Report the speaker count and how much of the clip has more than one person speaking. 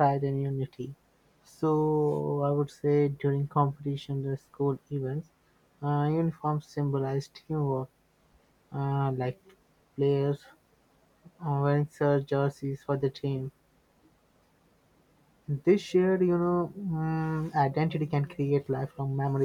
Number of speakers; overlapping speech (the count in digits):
1, no overlap